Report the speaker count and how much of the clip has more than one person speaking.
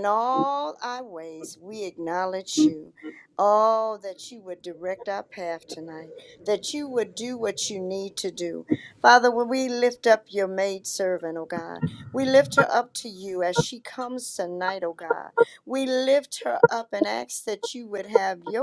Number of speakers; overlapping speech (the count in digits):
1, no overlap